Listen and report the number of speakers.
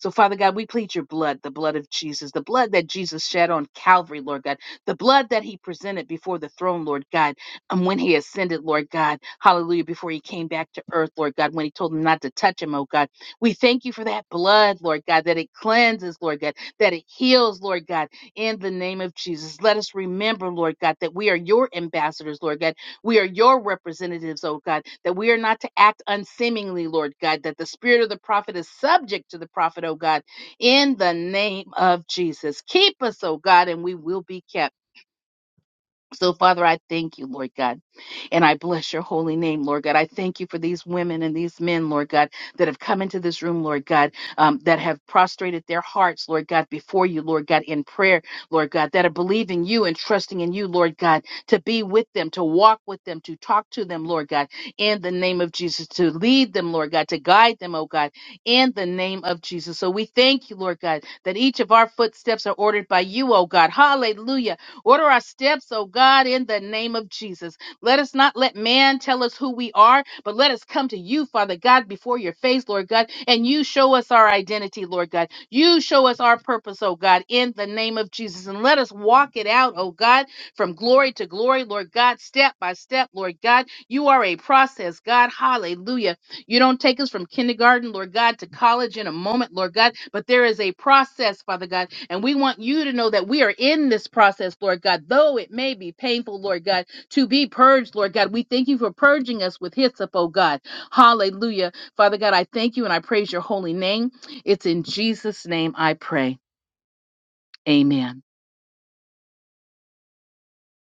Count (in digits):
1